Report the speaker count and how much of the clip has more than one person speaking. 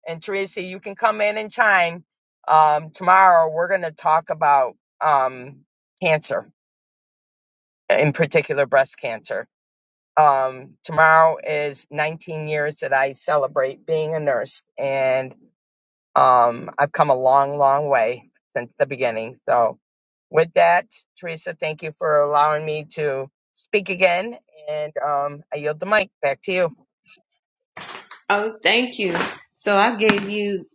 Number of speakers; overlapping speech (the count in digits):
2, no overlap